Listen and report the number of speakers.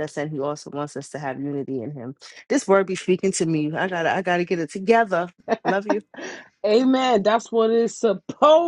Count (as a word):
two